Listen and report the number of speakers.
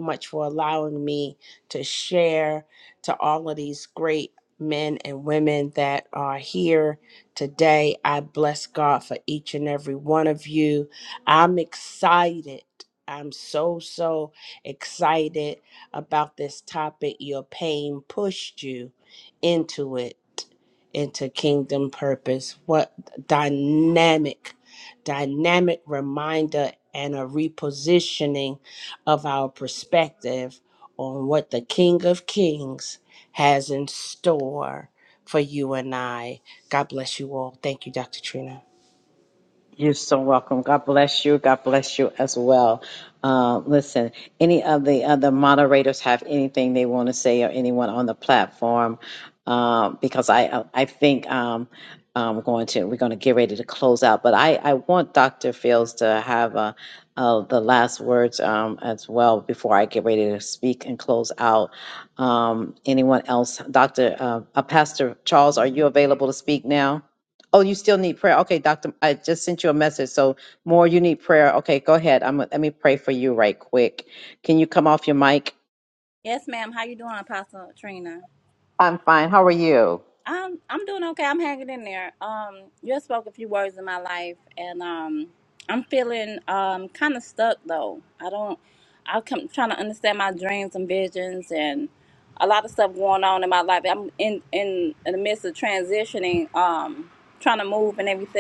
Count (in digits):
3